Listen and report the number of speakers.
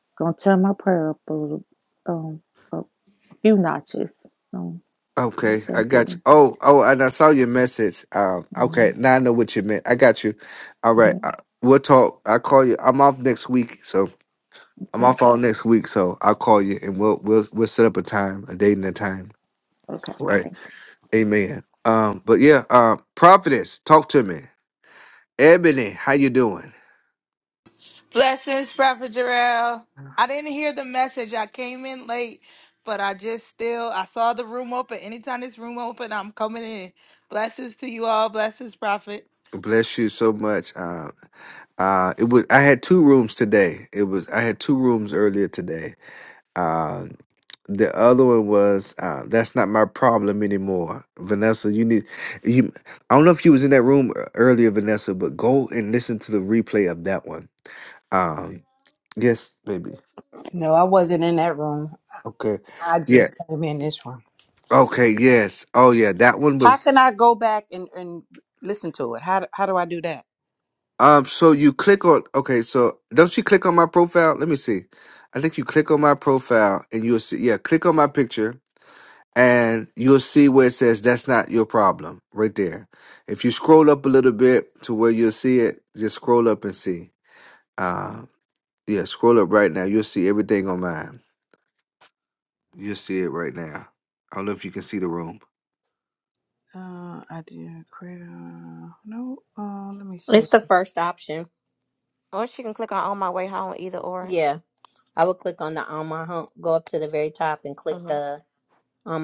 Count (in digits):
6